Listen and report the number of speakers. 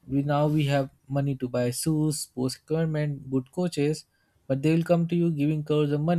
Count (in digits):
1